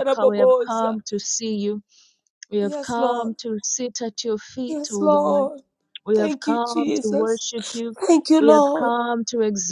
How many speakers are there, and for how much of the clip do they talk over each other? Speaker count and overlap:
2, about 41%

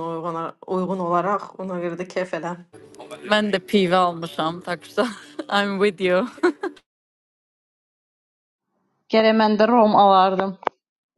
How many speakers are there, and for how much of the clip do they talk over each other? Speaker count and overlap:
3, no overlap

